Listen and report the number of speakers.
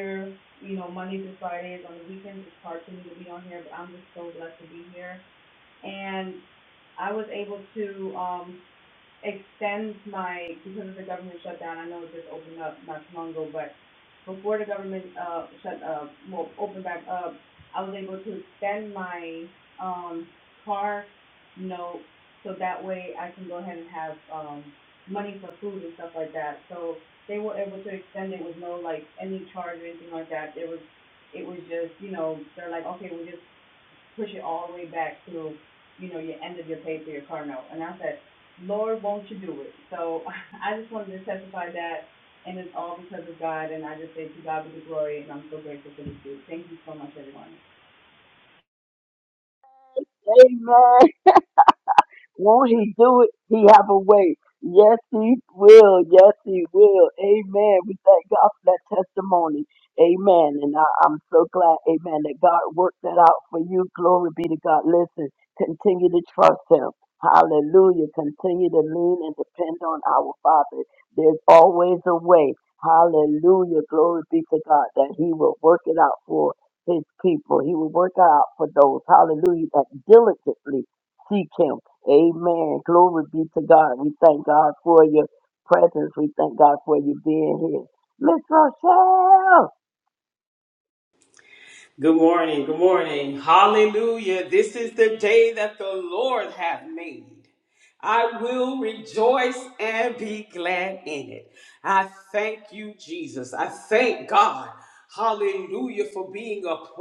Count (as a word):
three